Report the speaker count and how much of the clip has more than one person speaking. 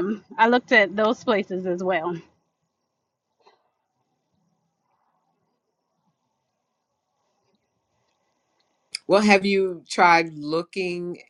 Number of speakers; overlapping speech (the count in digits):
2, no overlap